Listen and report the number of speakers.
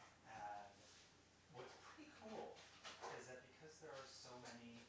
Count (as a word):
one